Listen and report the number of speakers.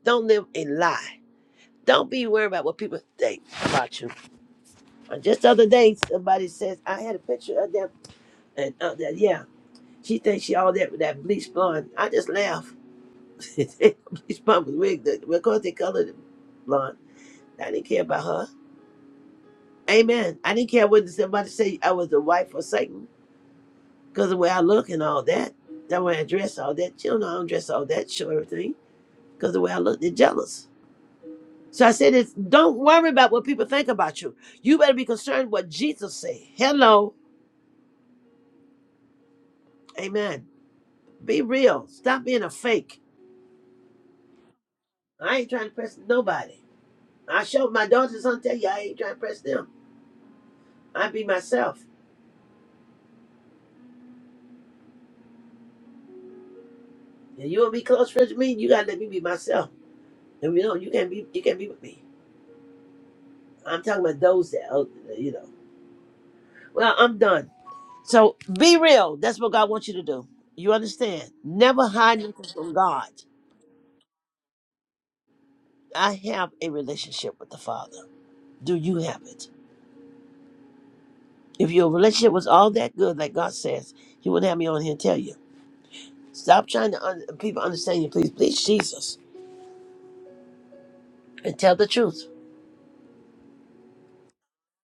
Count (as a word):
one